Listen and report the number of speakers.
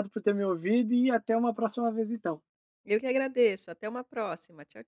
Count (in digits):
2